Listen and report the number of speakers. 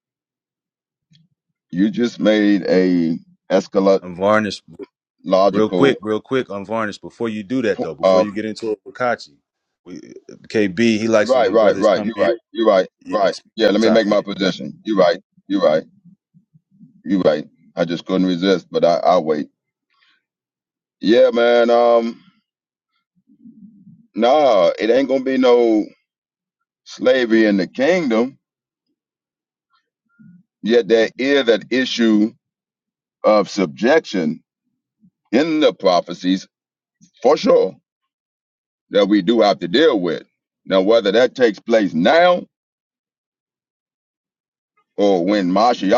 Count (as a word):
two